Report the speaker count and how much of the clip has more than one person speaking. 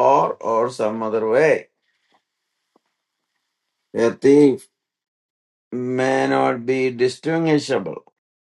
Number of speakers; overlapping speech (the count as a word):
one, no overlap